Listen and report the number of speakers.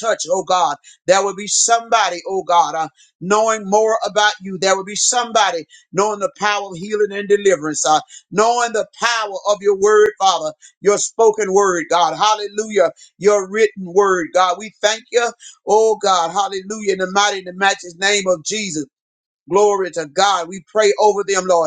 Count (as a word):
one